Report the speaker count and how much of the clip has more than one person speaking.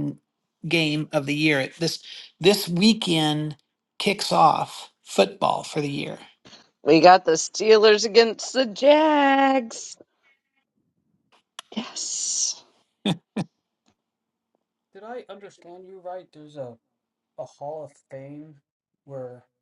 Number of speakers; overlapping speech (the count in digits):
3, no overlap